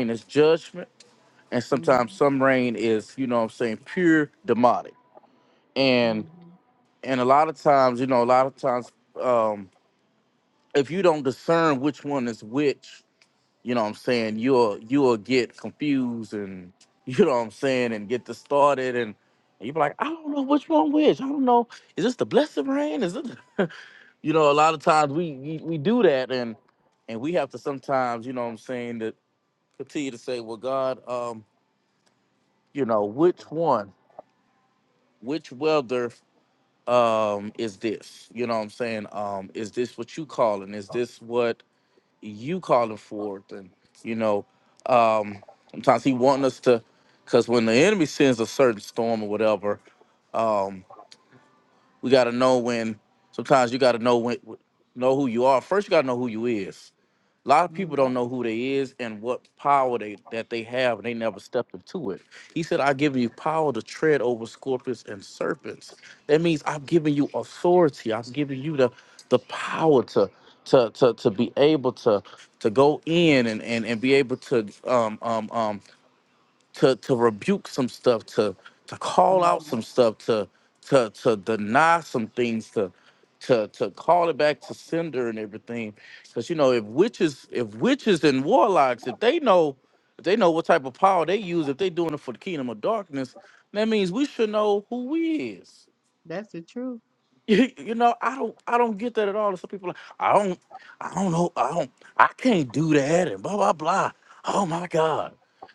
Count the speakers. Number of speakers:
two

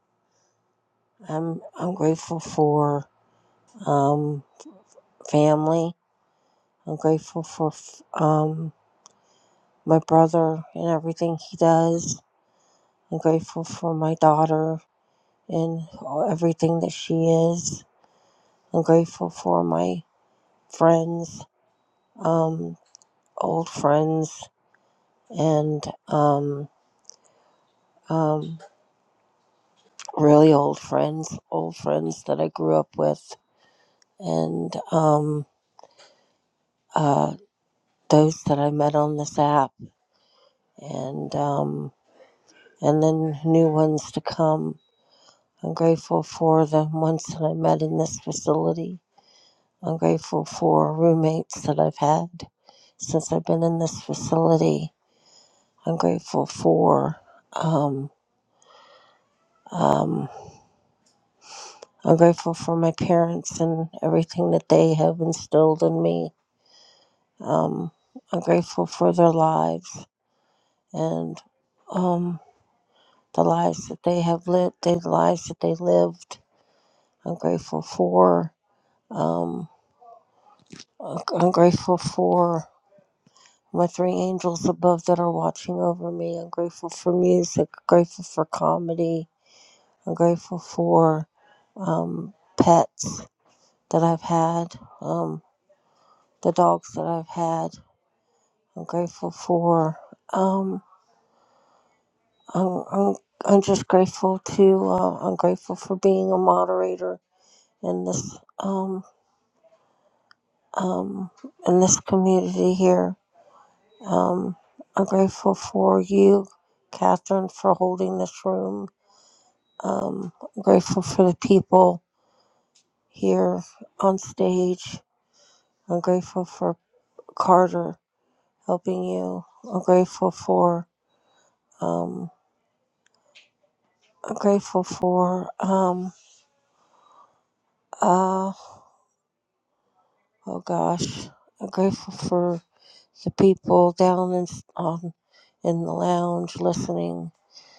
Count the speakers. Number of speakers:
one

